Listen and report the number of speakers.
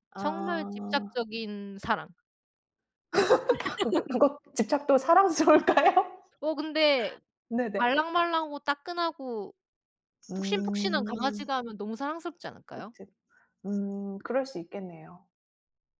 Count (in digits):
2